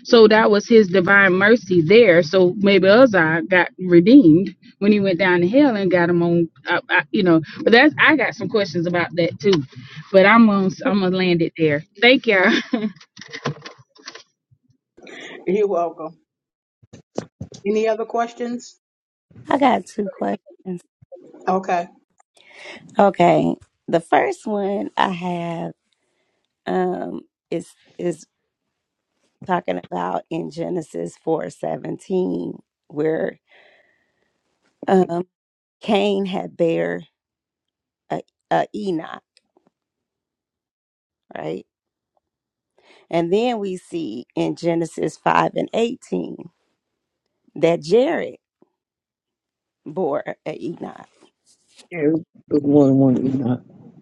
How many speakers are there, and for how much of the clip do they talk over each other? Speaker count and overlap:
4, no overlap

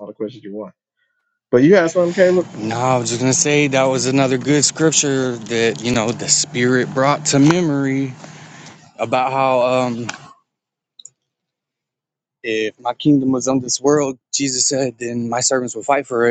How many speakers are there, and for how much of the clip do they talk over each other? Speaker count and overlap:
2, no overlap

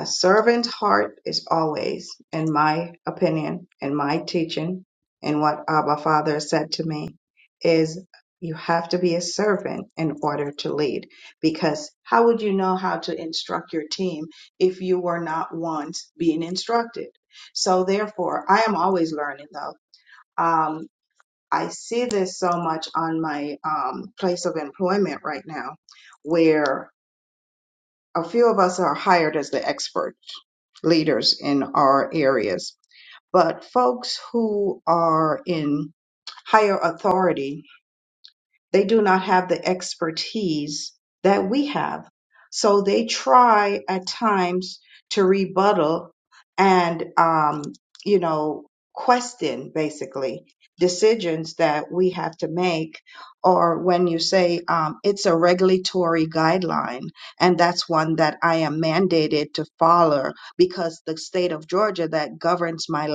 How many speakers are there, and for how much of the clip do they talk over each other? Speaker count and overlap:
1, no overlap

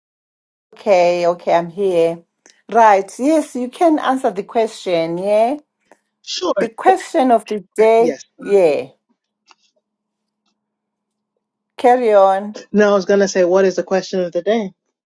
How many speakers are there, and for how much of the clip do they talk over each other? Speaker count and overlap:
2, about 1%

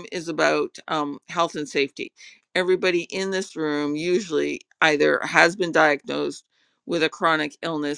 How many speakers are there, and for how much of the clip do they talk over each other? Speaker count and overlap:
1, no overlap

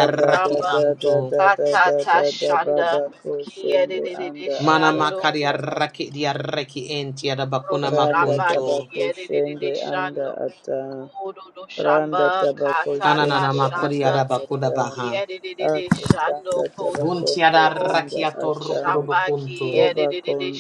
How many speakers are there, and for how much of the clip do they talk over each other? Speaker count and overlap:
3, about 80%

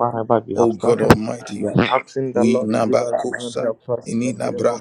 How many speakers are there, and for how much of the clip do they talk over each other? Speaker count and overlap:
2, about 59%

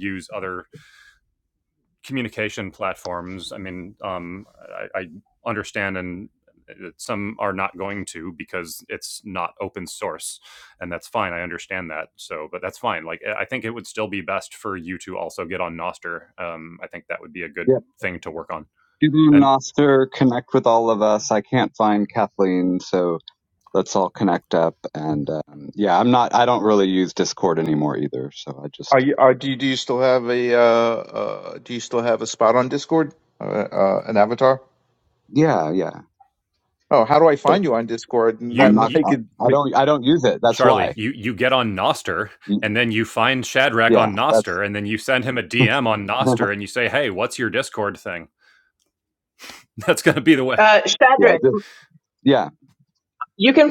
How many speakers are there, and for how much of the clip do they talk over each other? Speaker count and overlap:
4, about 5%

